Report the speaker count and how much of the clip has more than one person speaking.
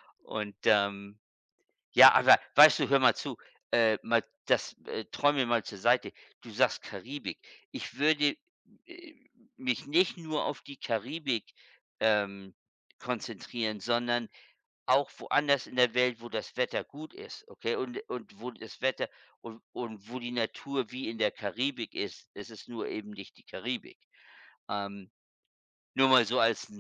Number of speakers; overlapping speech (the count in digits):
1, no overlap